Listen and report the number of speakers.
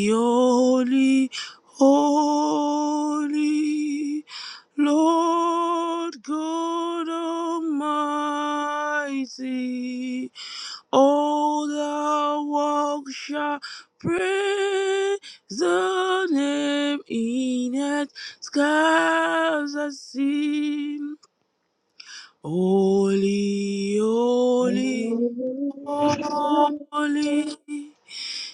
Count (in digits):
2